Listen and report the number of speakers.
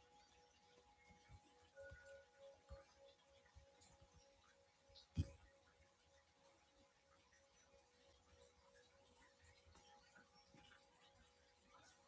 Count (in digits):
0